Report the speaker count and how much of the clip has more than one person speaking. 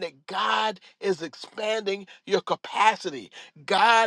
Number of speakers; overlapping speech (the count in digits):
1, no overlap